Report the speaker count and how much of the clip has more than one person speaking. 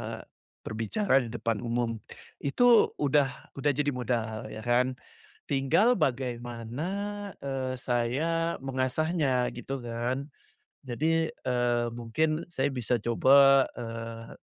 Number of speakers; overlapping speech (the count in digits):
1, no overlap